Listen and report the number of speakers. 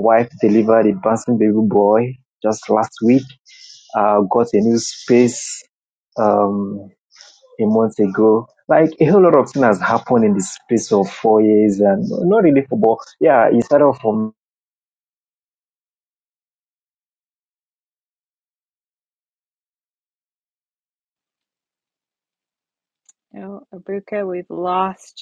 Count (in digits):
2